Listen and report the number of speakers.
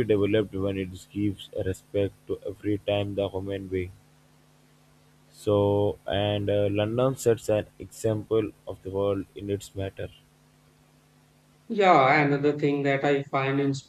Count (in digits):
2